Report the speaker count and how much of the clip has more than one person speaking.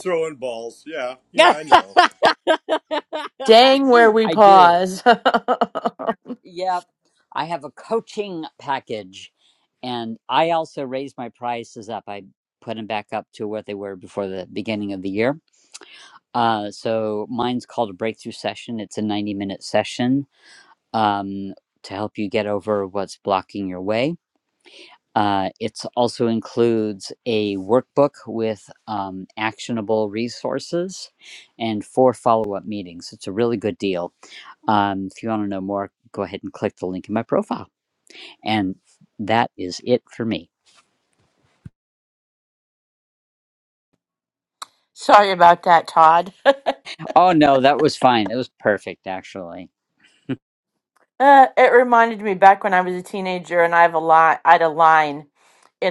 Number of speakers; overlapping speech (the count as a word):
three, about 1%